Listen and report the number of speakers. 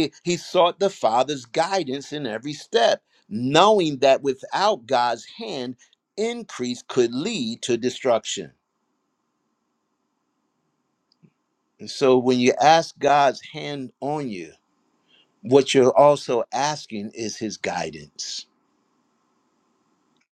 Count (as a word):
one